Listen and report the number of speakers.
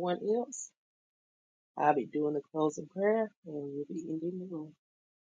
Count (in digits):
1